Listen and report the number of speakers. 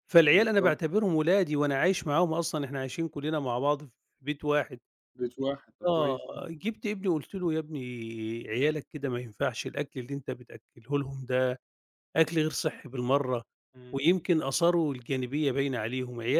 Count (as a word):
two